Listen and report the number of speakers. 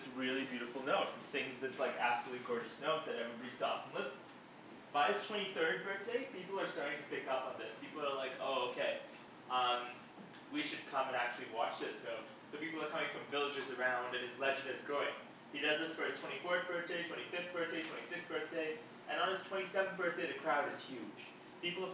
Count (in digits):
1